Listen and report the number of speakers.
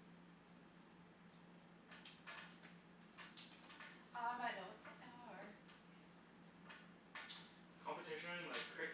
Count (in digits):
2